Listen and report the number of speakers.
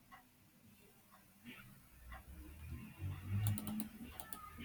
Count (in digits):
0